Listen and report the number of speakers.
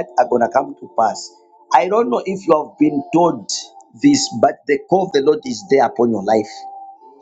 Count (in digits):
1